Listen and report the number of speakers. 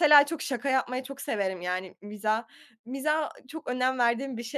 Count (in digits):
1